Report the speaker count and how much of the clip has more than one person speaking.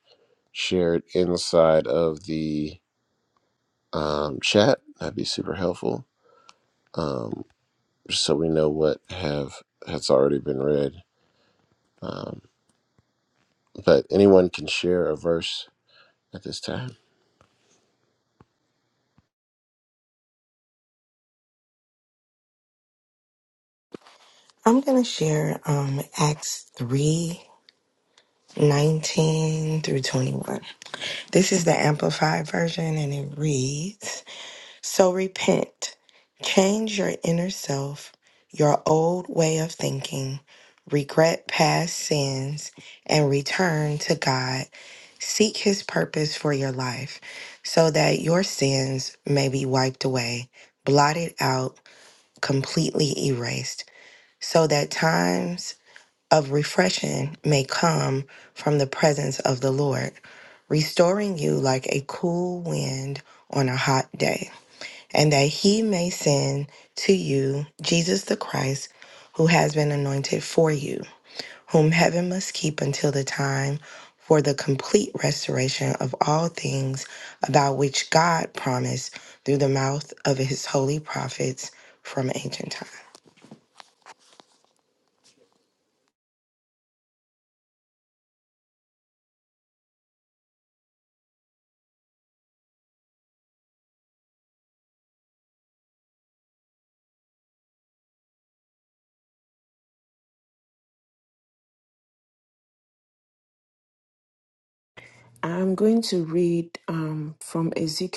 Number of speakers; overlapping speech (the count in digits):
3, no overlap